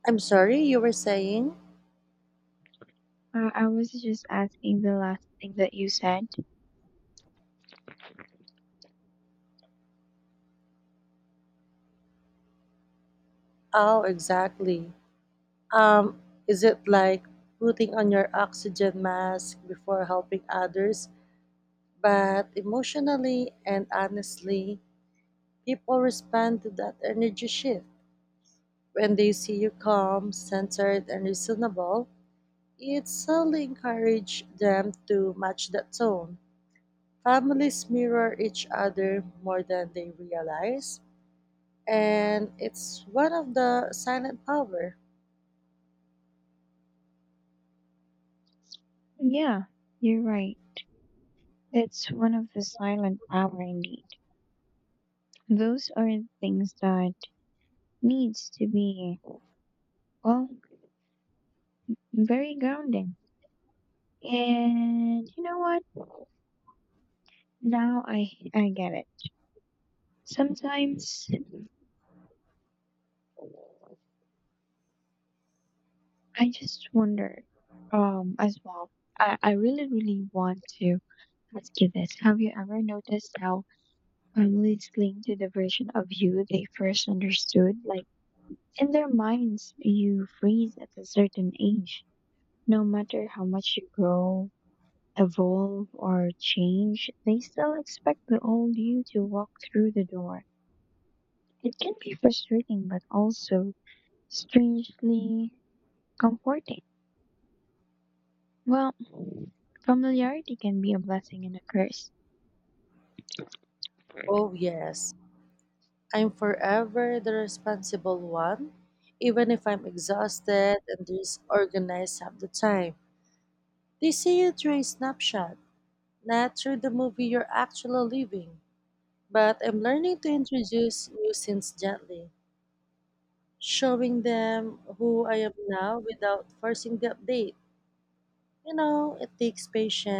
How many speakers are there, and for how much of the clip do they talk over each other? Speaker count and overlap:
2, no overlap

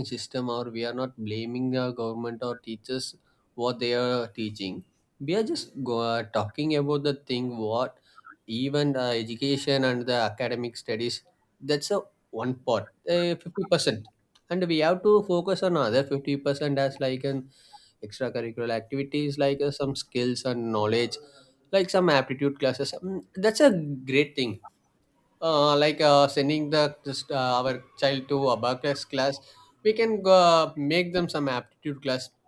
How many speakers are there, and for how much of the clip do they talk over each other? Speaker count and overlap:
1, no overlap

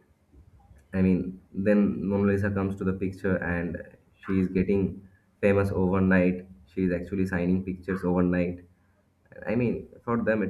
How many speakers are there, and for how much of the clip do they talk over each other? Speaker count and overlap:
1, no overlap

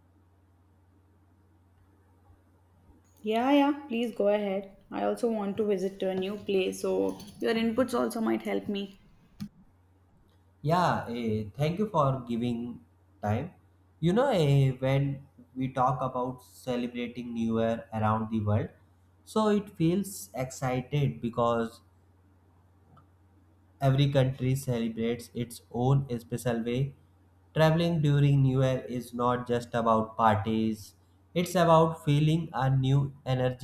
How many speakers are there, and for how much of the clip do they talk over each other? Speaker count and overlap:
2, no overlap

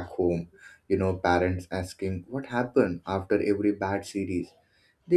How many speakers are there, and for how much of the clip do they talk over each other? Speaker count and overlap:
1, no overlap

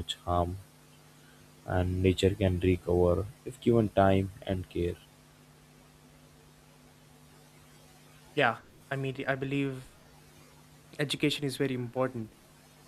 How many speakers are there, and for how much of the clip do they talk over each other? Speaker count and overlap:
2, no overlap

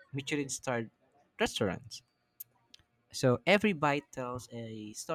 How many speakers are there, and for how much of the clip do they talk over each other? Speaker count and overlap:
1, no overlap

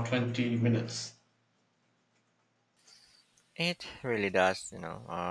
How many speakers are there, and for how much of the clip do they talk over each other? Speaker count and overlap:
2, no overlap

